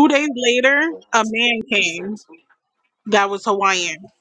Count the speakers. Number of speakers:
1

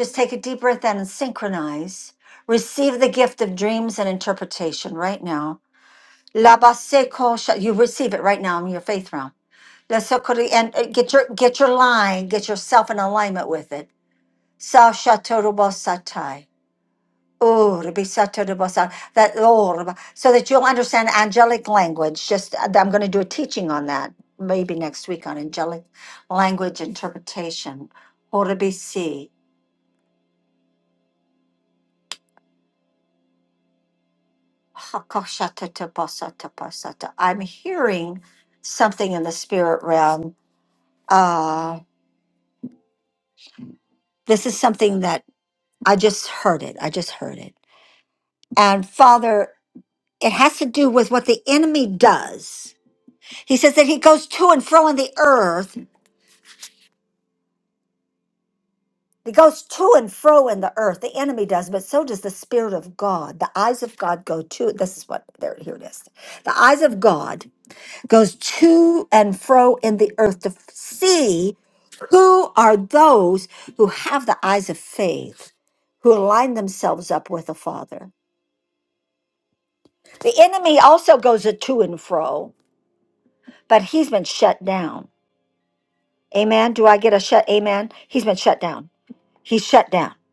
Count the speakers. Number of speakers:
1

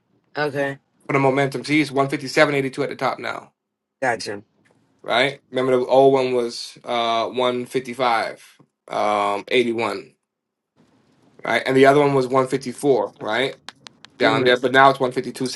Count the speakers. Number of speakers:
2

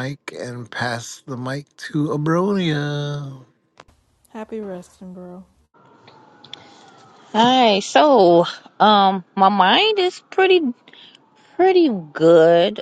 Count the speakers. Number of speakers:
3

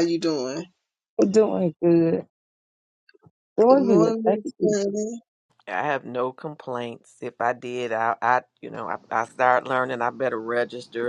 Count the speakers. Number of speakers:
3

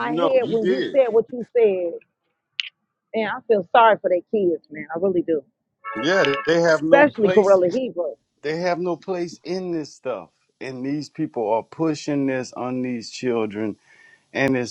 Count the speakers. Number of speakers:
2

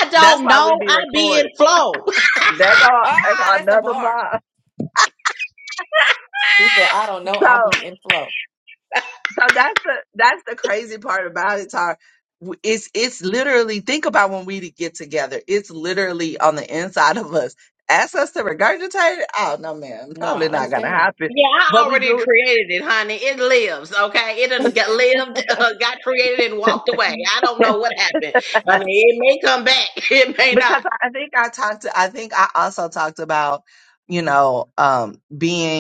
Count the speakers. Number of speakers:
3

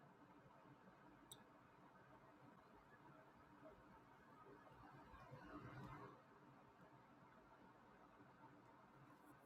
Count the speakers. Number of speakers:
0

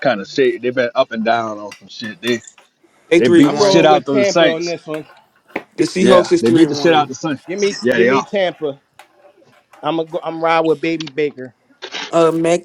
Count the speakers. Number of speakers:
3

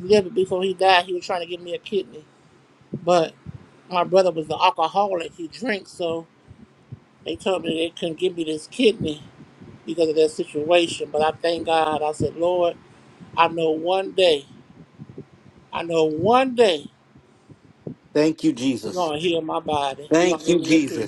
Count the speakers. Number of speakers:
2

